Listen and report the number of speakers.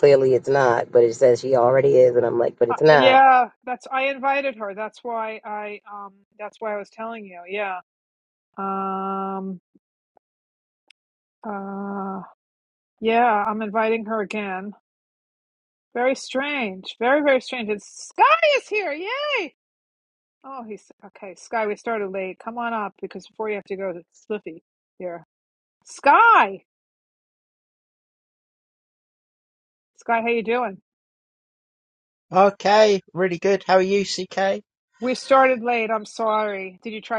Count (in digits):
3